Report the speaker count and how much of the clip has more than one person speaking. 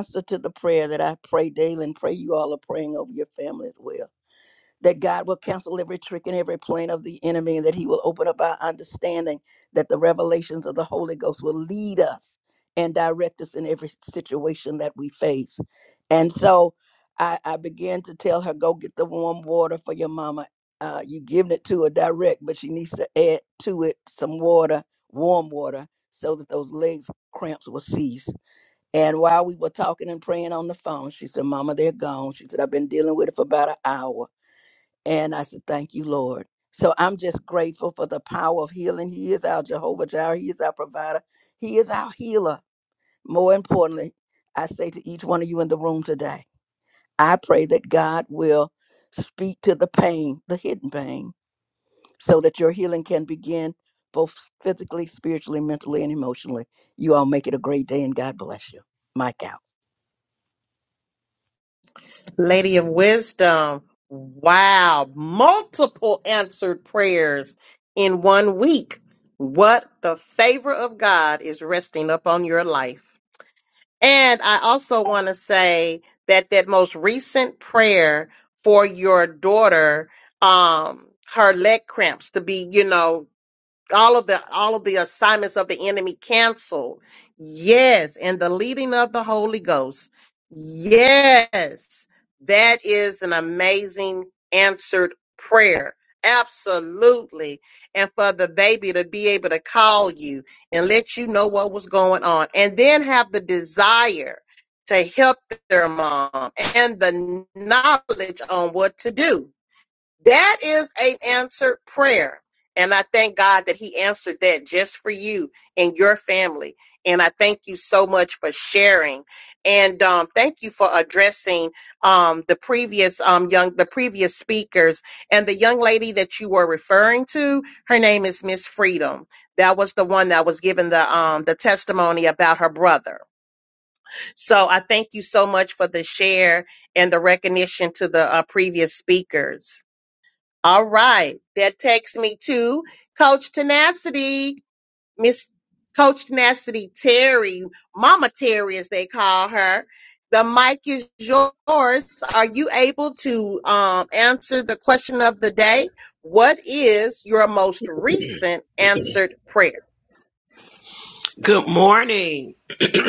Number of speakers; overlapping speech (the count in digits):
3, no overlap